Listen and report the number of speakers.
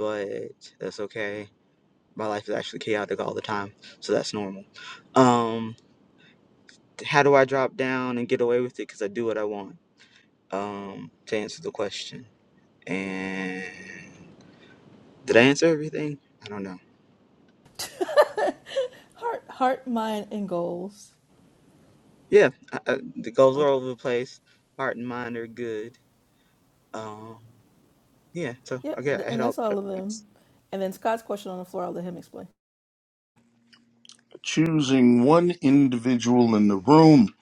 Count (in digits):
3